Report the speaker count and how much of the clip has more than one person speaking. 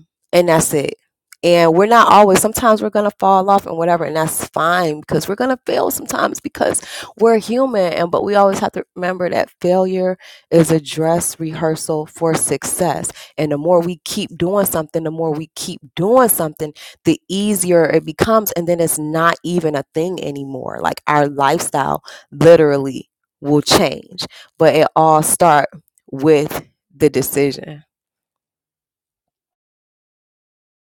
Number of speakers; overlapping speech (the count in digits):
1, no overlap